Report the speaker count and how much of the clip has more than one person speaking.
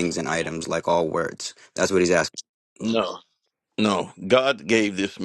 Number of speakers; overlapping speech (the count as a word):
two, no overlap